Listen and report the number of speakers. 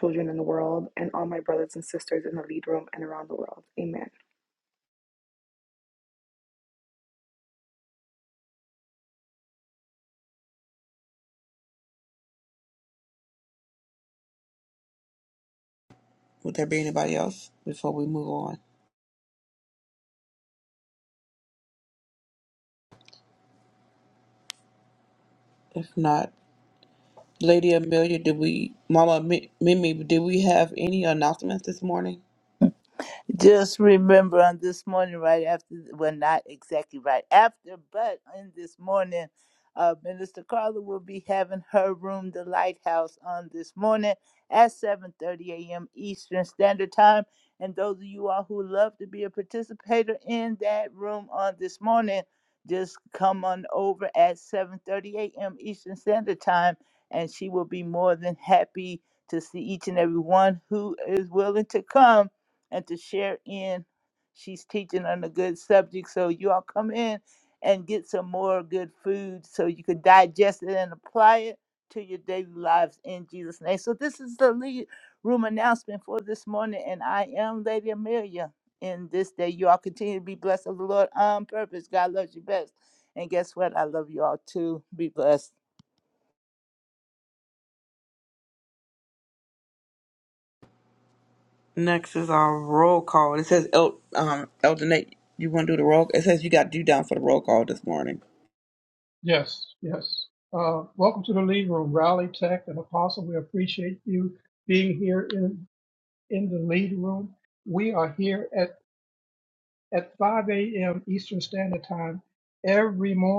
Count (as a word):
four